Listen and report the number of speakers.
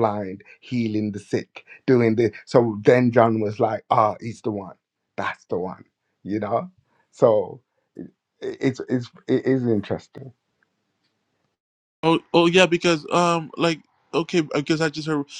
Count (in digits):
2